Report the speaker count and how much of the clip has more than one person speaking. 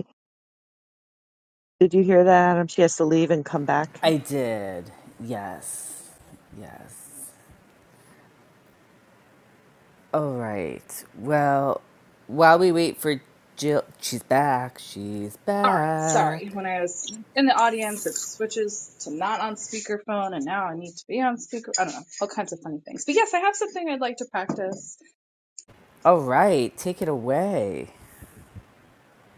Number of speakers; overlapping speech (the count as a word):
three, about 3%